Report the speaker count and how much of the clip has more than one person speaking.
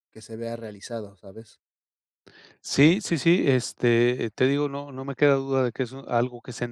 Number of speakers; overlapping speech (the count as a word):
two, no overlap